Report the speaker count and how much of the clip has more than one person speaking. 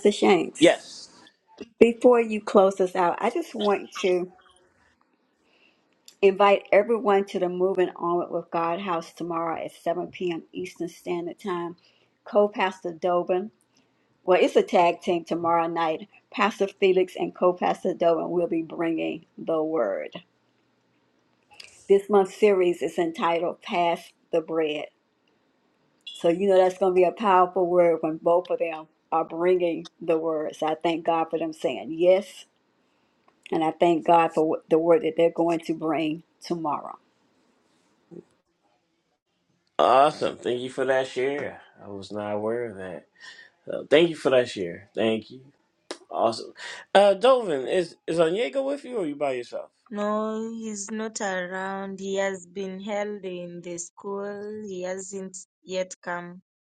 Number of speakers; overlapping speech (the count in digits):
3, under 1%